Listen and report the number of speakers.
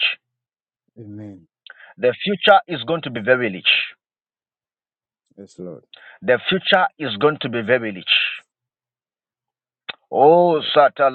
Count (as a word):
two